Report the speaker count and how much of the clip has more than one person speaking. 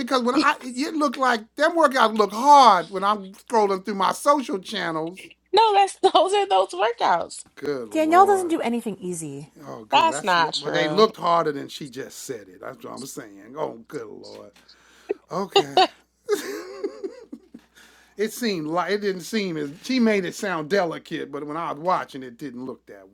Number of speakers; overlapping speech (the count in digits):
3, about 8%